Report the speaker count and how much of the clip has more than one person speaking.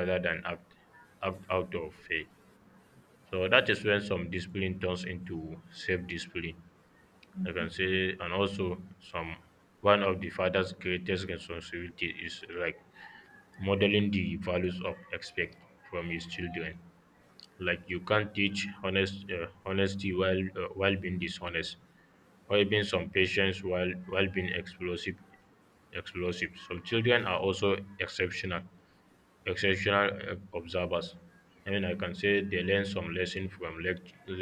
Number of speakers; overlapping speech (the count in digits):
1, no overlap